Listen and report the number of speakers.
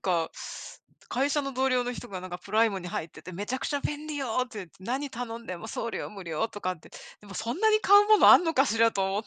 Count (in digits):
1